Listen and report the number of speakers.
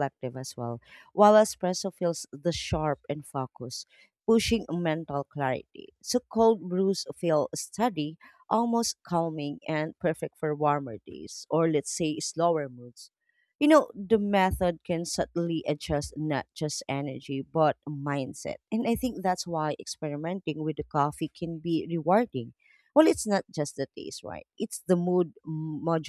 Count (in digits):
1